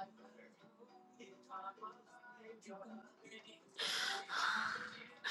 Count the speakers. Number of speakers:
0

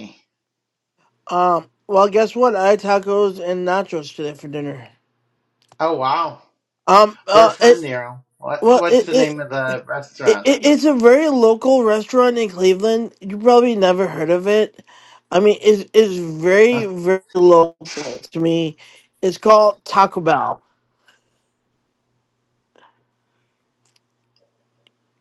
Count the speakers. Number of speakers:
2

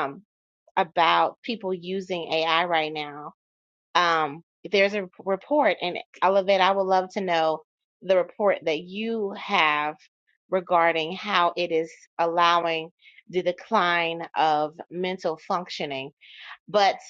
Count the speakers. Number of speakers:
1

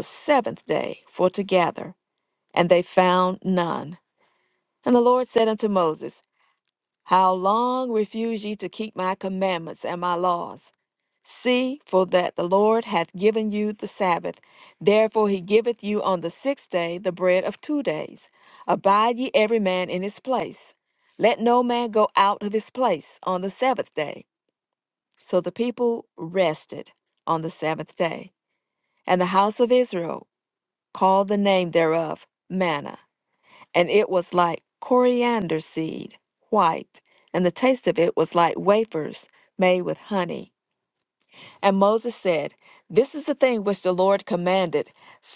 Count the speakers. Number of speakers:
1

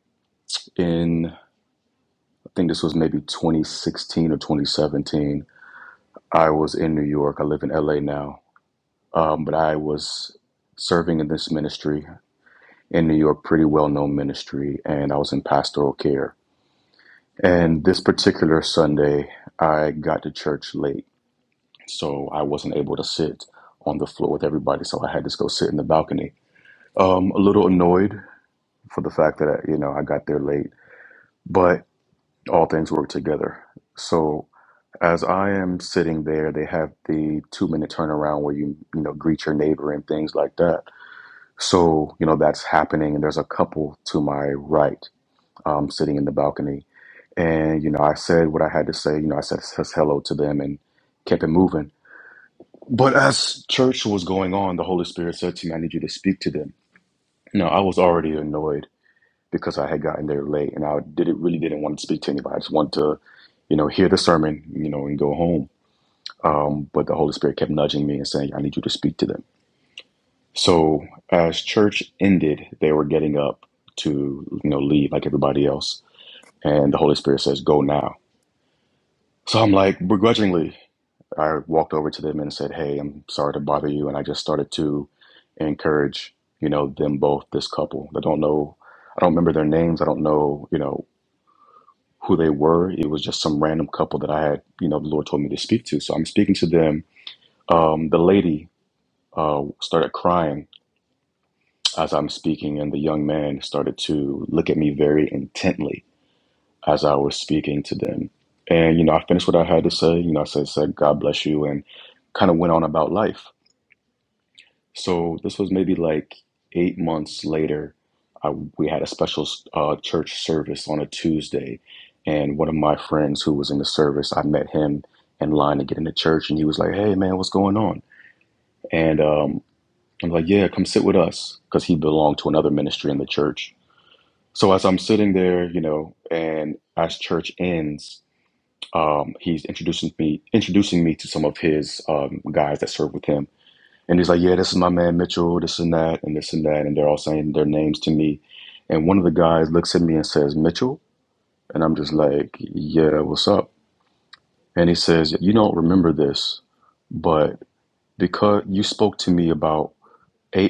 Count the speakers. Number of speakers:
1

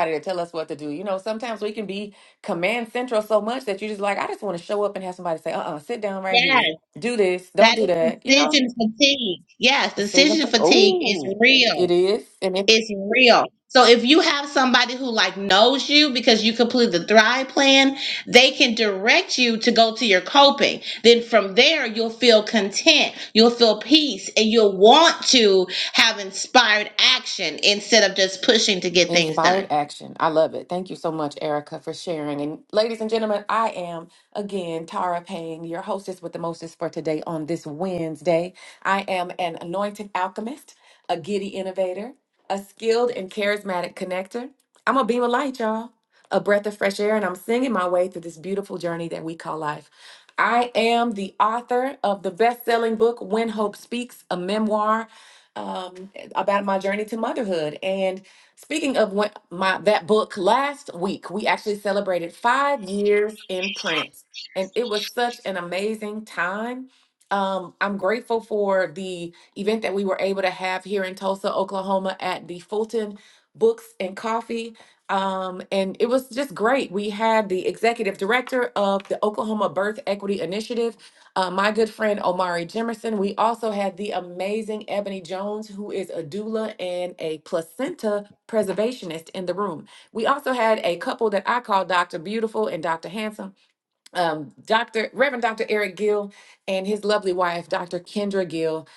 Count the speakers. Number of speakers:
2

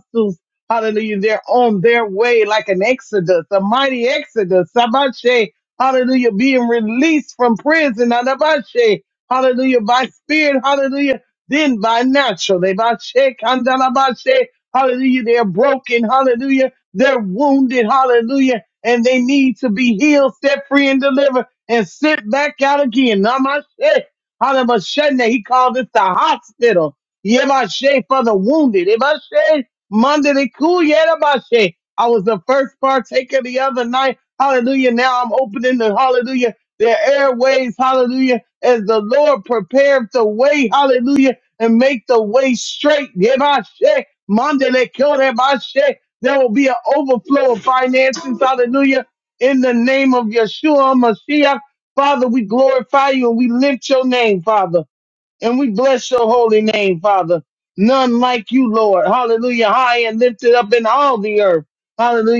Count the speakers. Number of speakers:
1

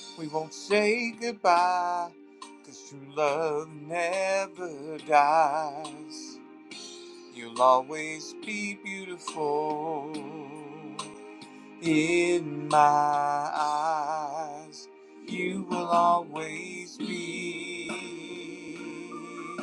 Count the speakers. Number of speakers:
1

